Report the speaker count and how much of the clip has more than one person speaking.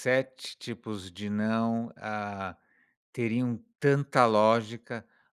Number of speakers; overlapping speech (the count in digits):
1, no overlap